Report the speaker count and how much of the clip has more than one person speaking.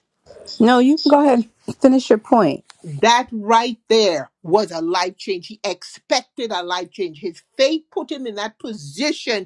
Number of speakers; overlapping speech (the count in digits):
2, no overlap